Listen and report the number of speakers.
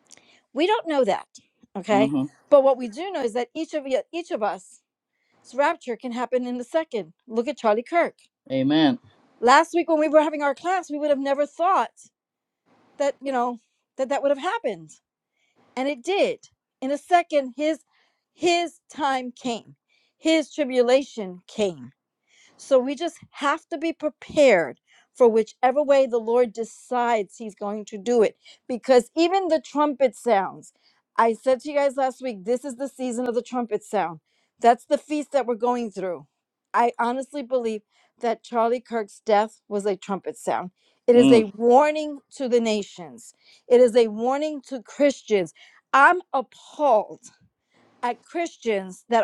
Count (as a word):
two